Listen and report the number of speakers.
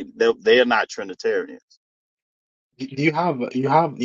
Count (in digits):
2